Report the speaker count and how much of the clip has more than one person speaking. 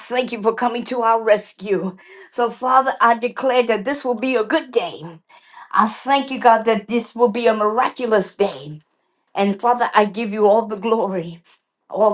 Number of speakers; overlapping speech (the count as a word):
one, no overlap